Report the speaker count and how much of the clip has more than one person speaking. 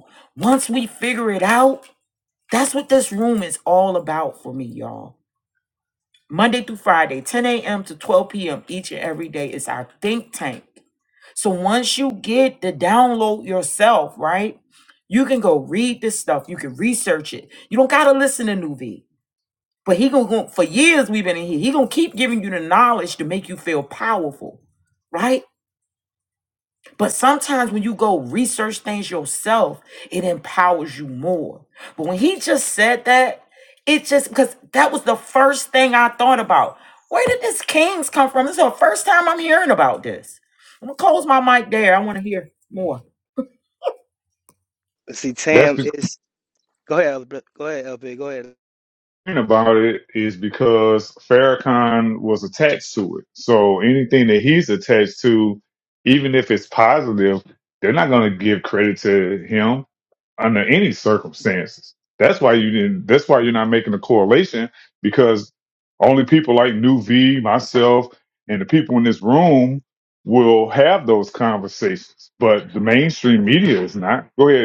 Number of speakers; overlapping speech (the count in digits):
3, about 1%